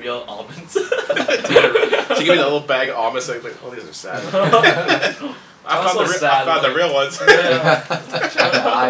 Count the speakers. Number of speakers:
3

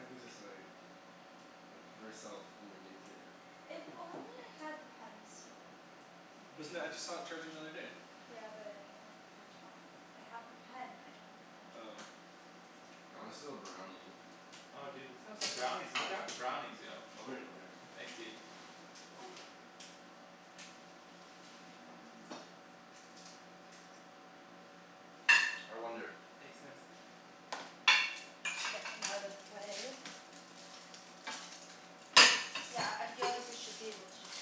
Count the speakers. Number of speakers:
4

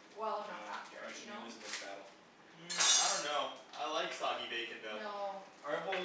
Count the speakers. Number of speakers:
3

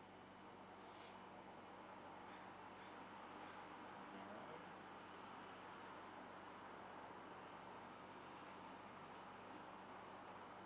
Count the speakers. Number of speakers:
1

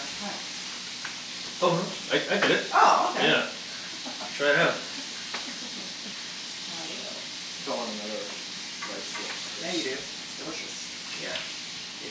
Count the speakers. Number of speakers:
3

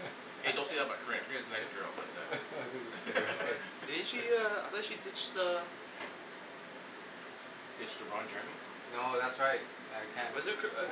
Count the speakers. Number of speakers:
3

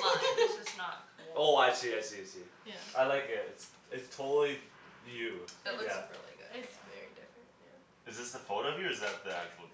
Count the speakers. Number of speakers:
4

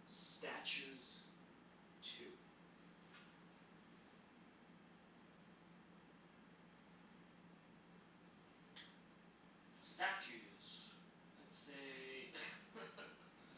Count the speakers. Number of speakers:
2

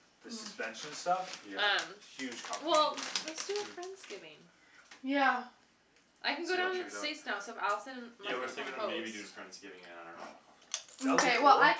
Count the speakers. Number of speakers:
4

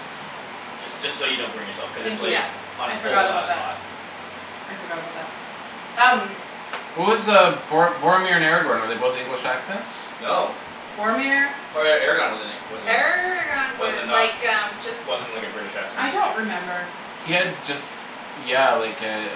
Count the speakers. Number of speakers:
4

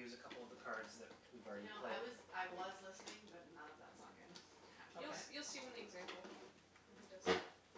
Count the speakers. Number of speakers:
3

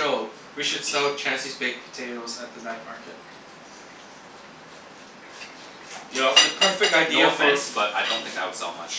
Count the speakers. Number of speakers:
2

